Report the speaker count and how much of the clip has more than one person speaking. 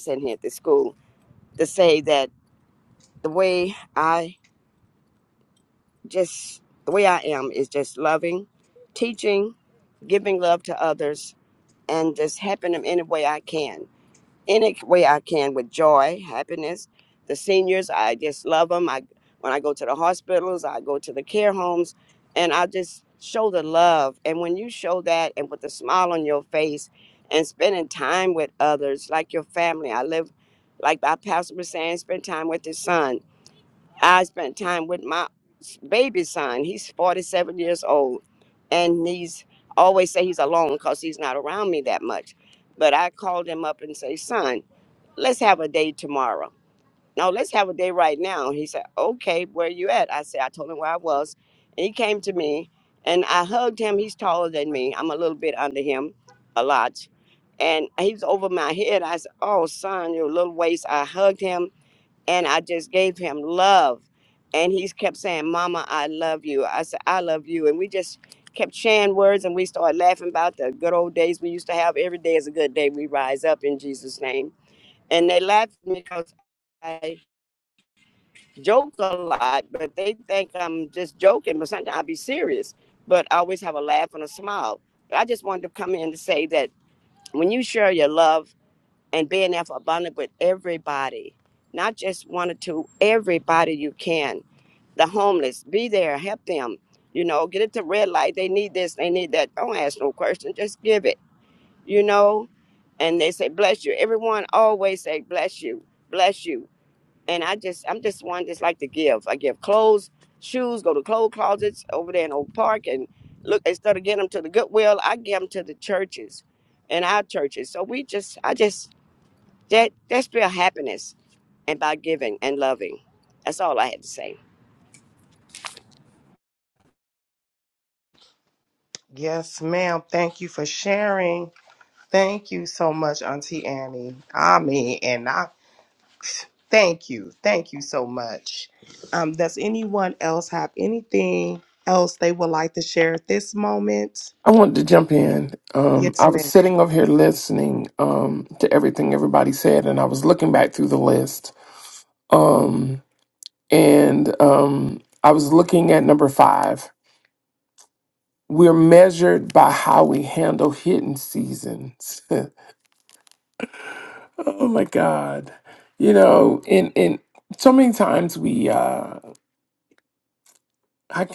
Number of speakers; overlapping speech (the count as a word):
three, under 1%